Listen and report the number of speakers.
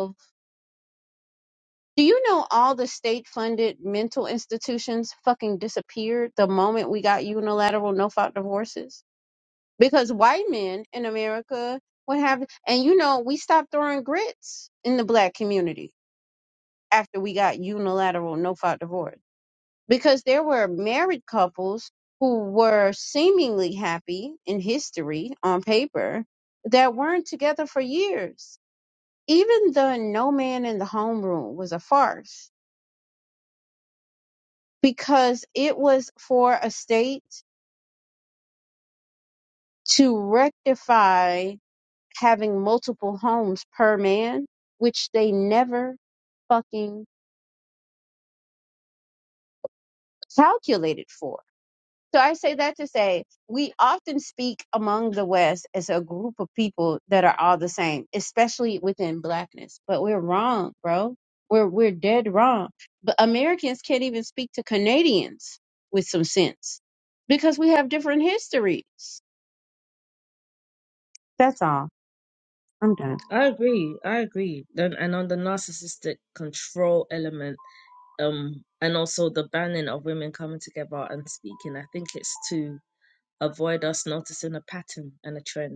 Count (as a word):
two